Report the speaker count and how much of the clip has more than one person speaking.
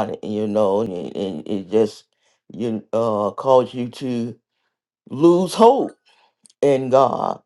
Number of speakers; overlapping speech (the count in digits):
1, no overlap